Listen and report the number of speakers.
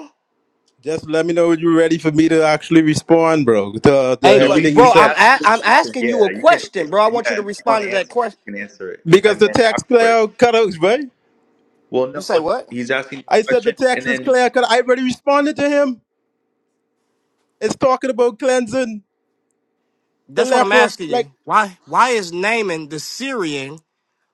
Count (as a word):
three